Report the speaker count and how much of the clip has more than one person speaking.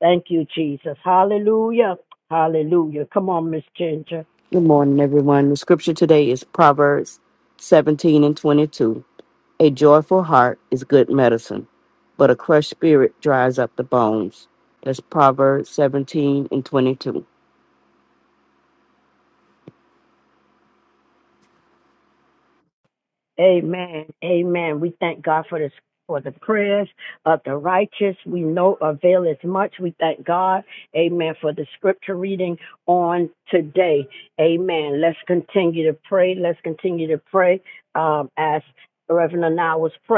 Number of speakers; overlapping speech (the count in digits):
2, no overlap